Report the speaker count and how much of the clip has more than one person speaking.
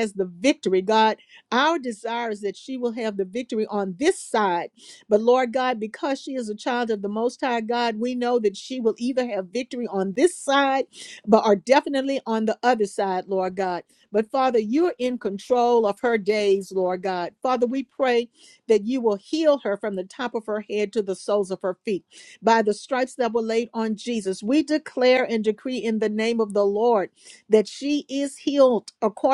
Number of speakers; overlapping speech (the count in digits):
1, no overlap